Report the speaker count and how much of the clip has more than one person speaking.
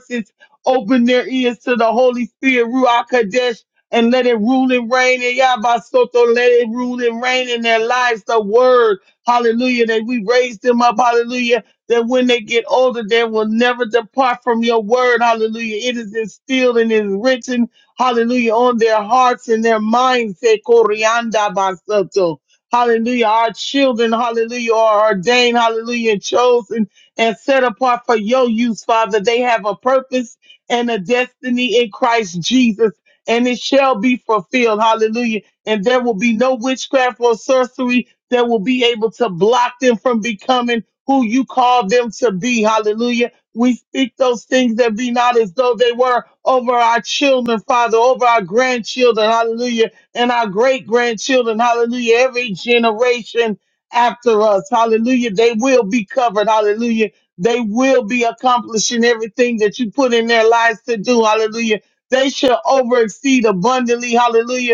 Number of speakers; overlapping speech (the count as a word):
one, no overlap